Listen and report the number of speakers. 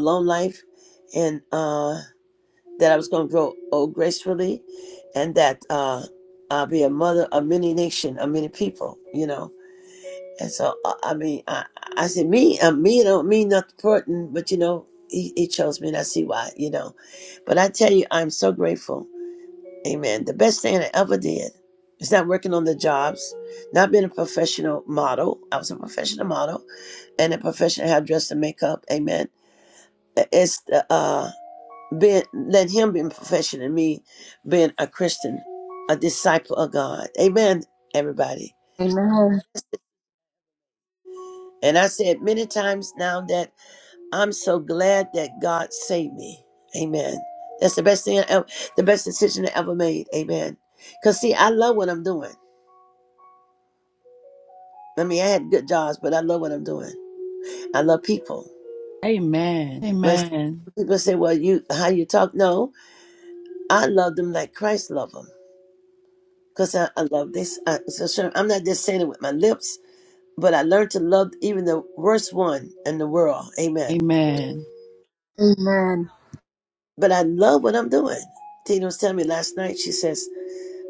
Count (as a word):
three